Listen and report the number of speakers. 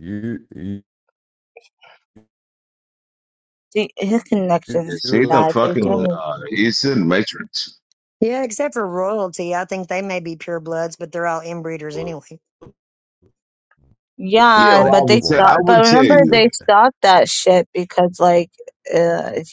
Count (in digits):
4